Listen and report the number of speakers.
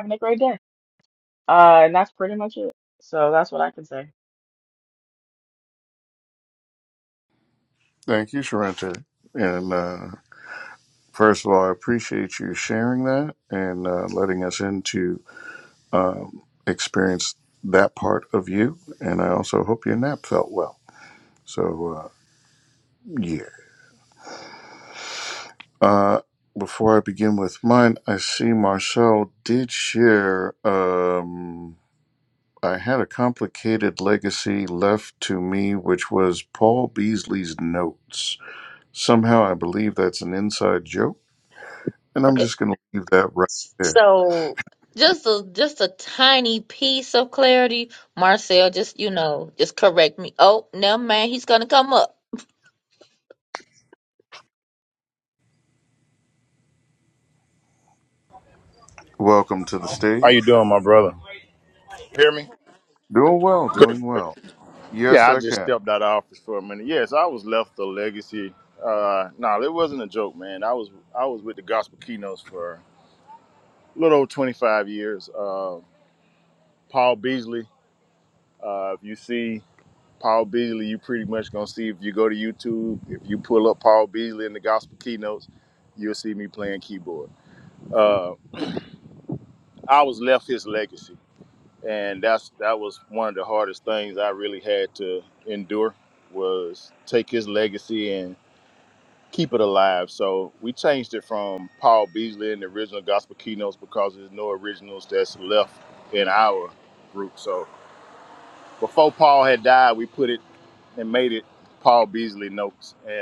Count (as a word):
four